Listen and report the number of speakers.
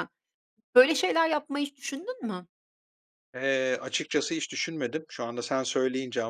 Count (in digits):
2